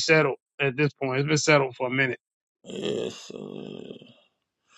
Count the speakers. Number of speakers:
two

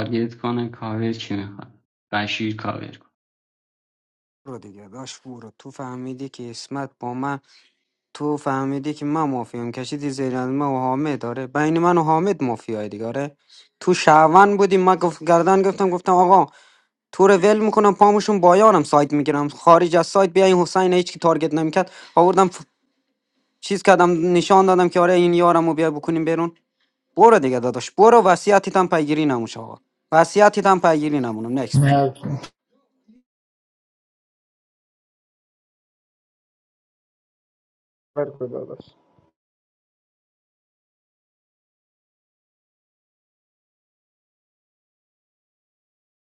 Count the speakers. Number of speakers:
three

